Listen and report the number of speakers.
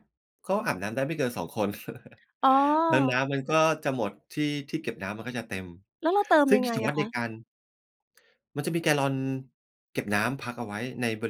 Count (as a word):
two